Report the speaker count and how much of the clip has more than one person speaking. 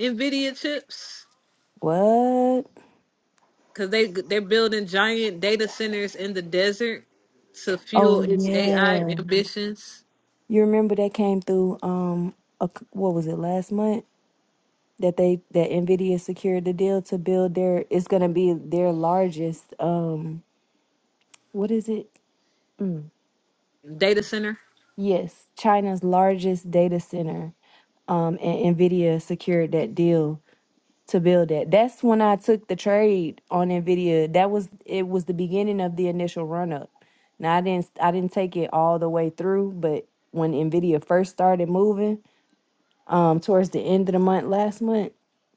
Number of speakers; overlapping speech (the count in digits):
2, about 3%